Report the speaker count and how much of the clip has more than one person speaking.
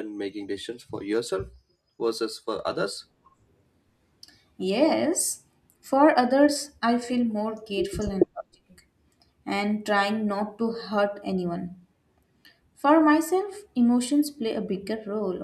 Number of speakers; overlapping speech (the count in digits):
2, no overlap